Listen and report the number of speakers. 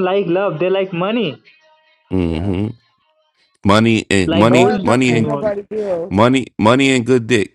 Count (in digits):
3